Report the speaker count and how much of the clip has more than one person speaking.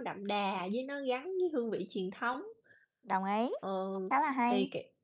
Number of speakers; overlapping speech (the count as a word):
two, about 4%